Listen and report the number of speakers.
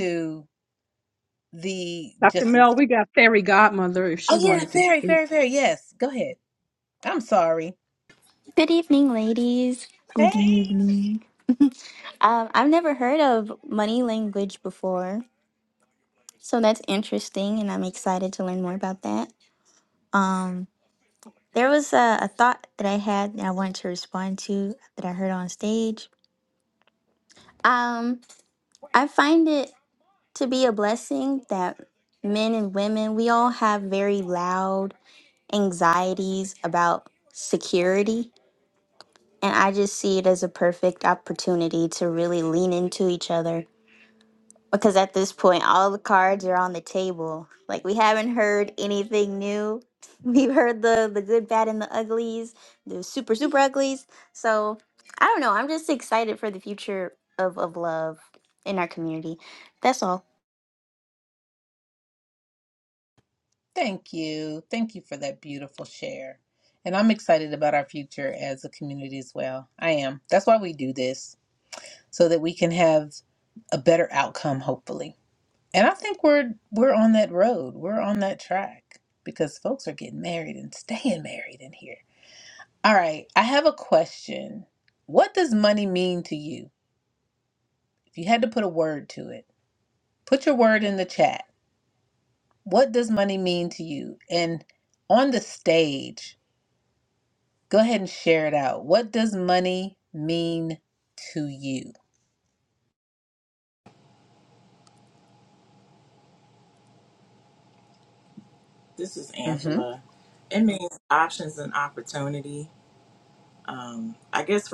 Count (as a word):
four